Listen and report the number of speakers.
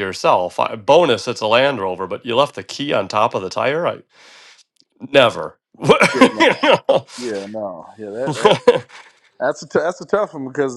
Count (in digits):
2